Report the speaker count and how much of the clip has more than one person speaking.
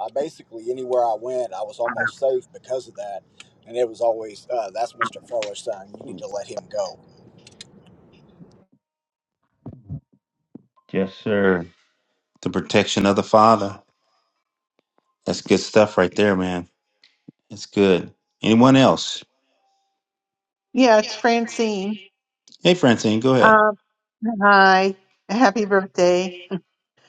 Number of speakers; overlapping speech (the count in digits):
3, about 1%